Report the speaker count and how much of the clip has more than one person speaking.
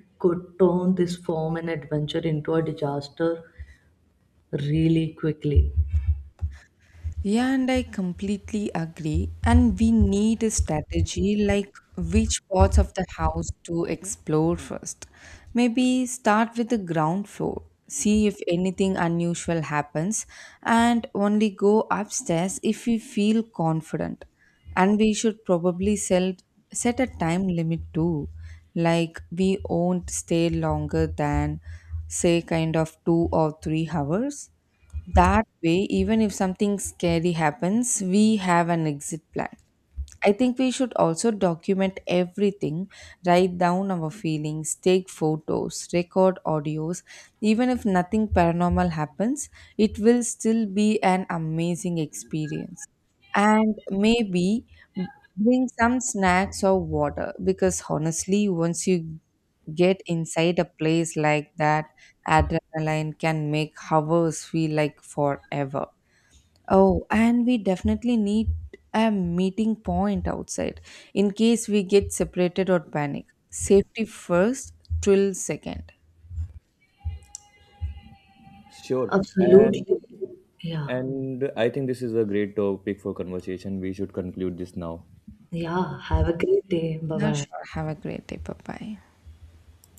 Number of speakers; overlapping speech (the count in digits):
3, about 1%